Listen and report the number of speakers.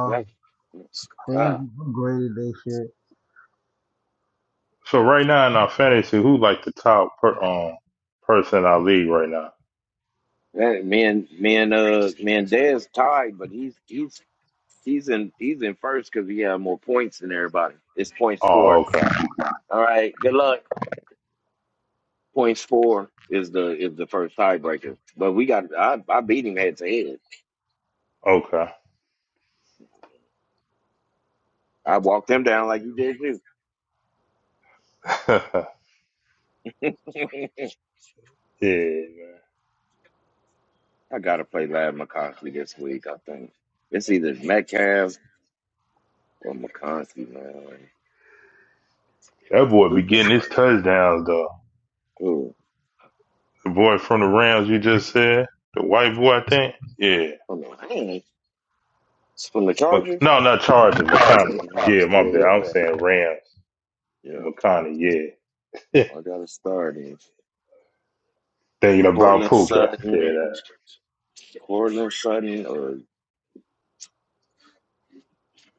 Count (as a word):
three